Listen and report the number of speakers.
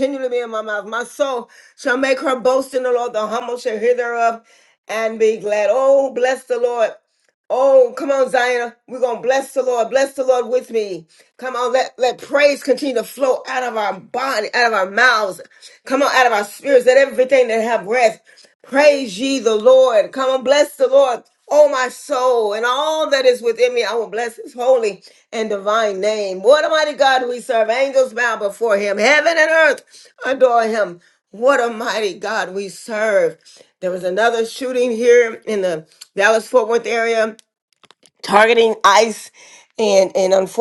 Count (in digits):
1